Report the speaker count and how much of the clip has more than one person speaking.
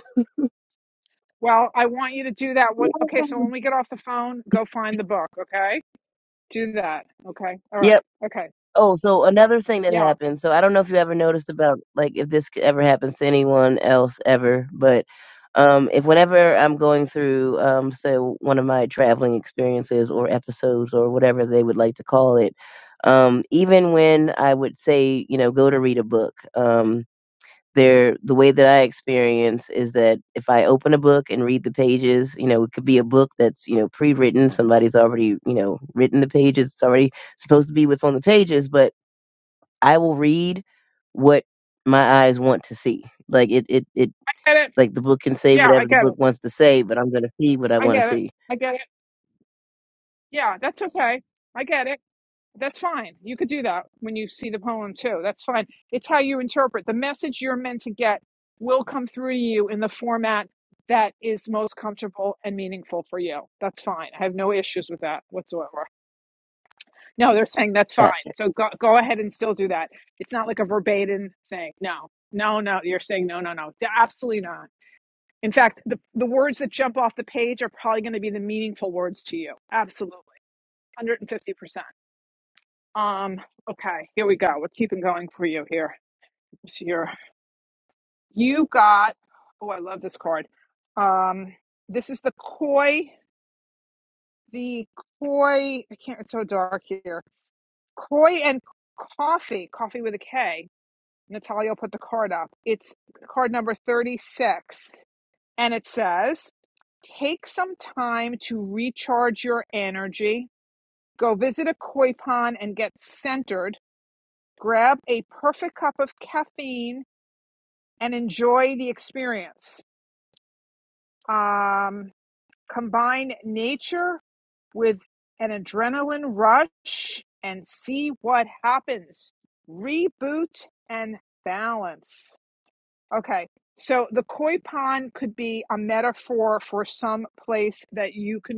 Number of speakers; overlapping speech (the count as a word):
two, about 1%